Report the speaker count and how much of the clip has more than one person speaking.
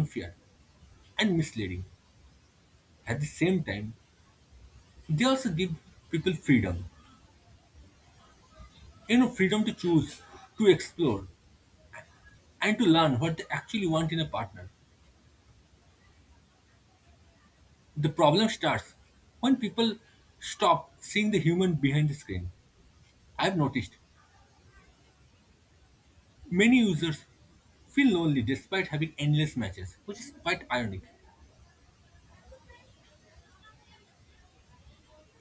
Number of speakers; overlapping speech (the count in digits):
1, no overlap